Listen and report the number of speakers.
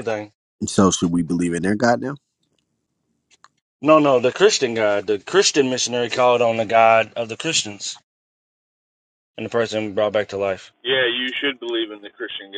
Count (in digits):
3